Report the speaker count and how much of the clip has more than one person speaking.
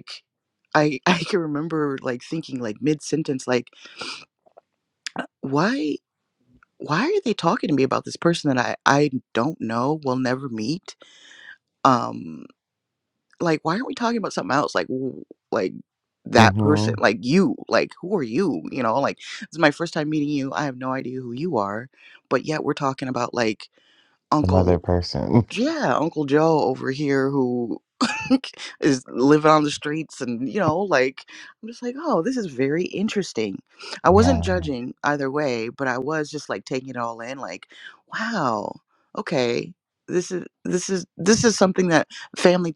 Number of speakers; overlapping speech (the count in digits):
2, about 3%